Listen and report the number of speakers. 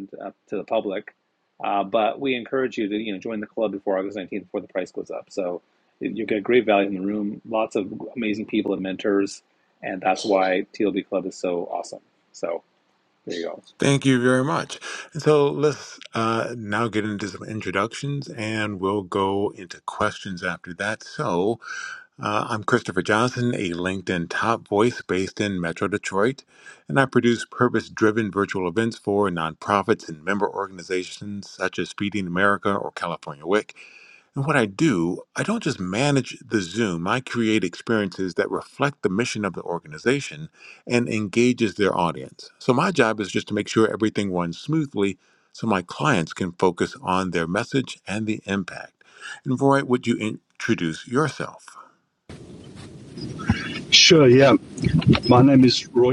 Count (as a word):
three